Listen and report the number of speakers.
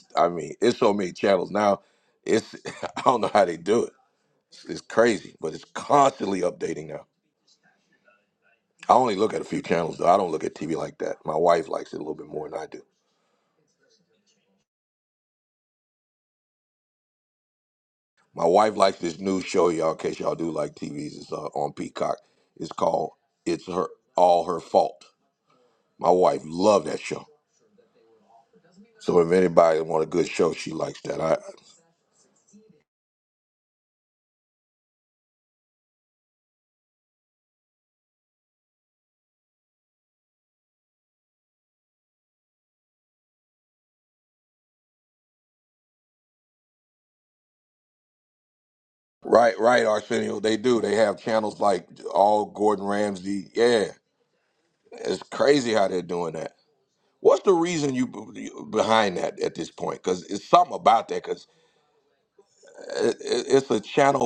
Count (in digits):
1